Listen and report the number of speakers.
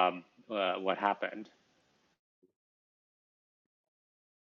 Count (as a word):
one